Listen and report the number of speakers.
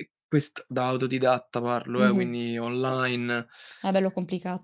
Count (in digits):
2